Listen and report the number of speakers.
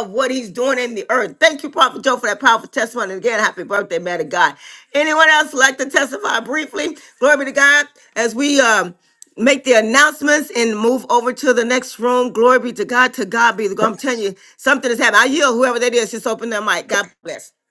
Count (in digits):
1